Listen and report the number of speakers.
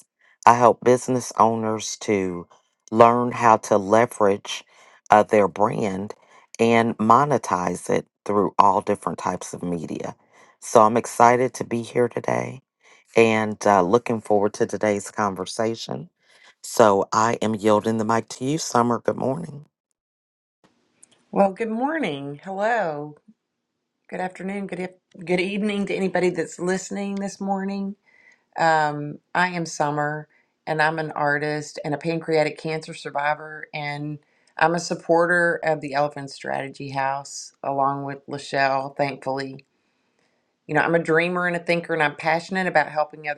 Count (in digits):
2